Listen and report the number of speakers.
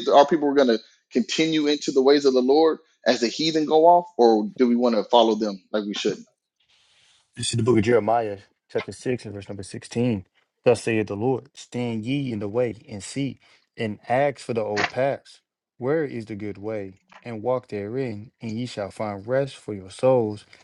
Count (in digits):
2